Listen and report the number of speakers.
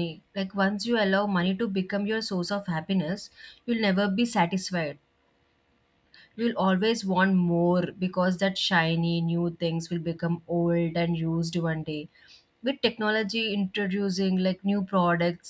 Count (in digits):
1